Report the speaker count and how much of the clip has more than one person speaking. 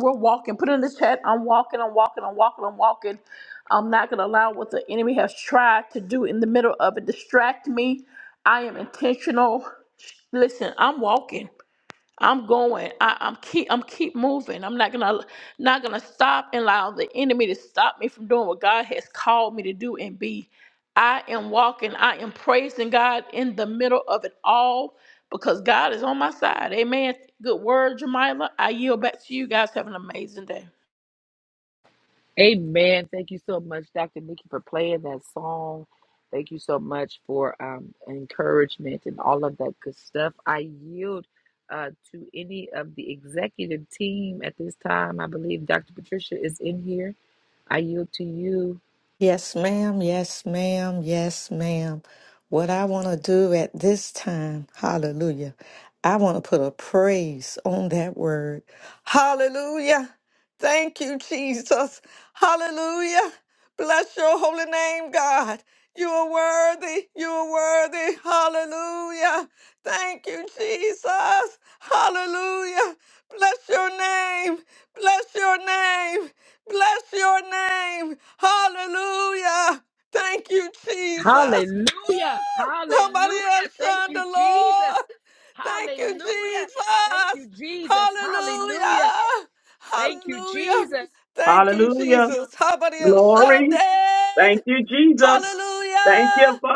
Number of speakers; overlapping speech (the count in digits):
4, about 9%